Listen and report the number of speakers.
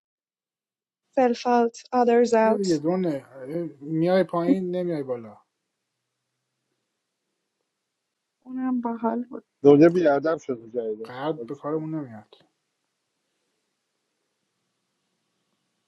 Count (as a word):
three